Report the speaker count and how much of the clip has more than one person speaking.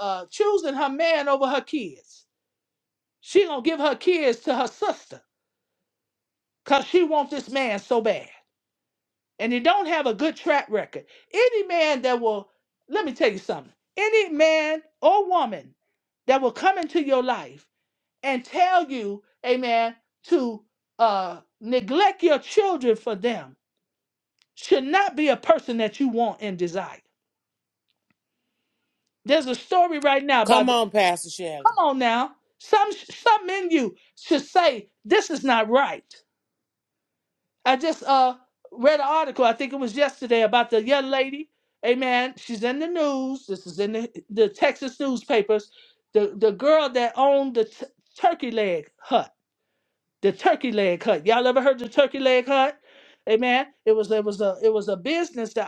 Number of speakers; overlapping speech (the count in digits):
2, about 1%